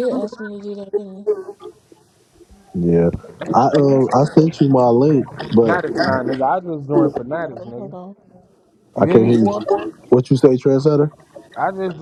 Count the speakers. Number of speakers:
3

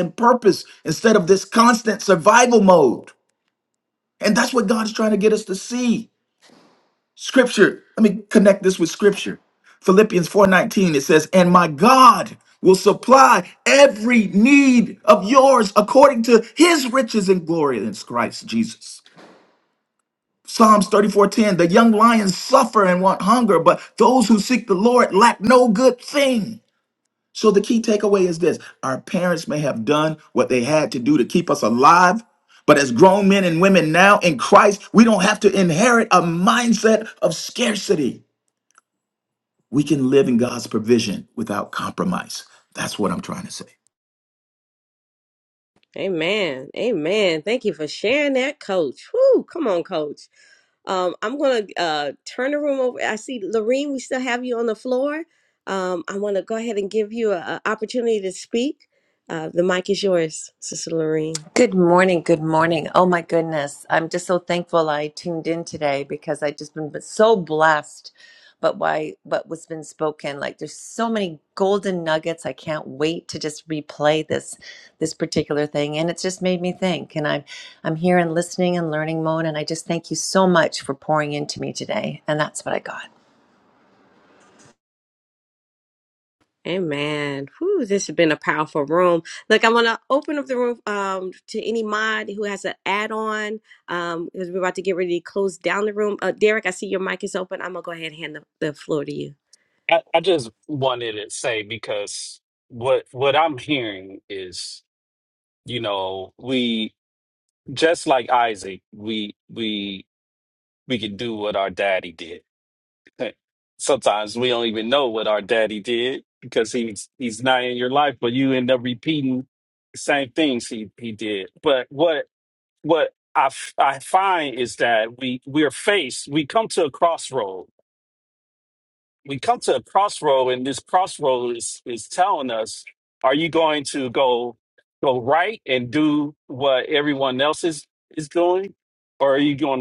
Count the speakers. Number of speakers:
4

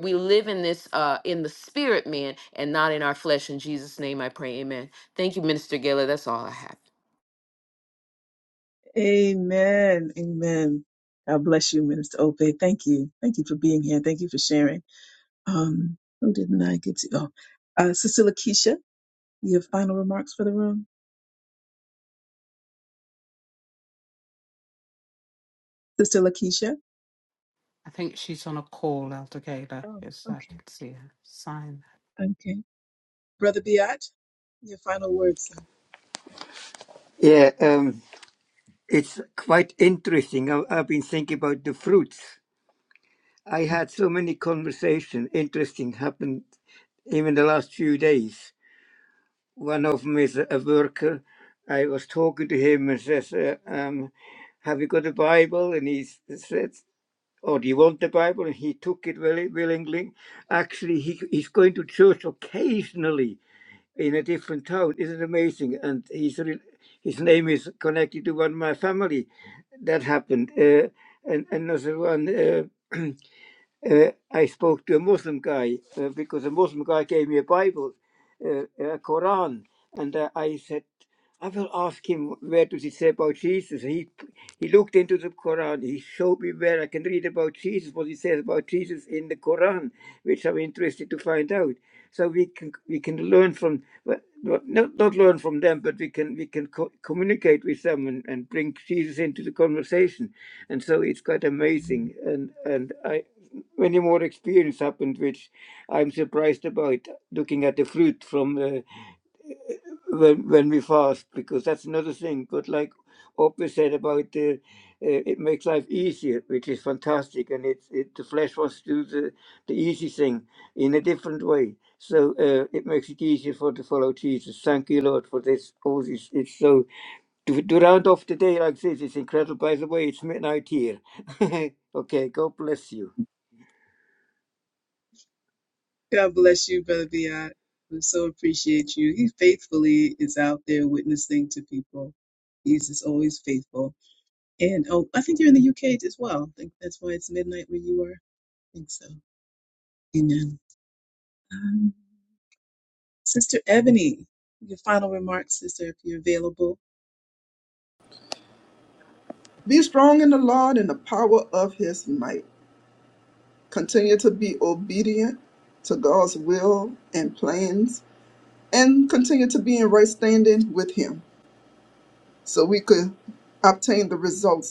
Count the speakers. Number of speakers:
5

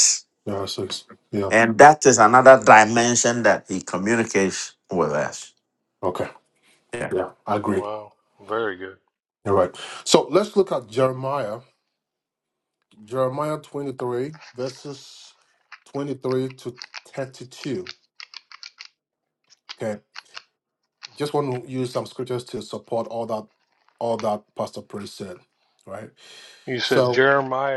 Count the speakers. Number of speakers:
3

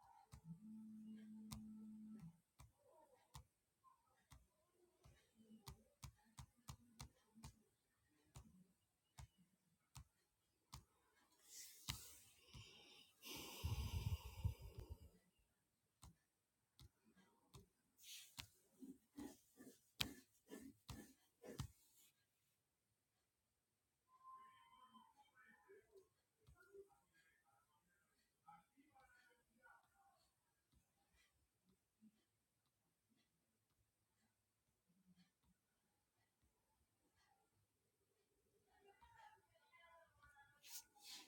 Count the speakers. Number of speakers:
0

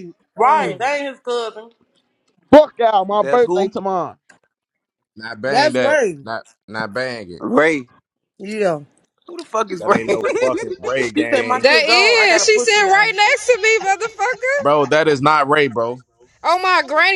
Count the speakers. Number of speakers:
6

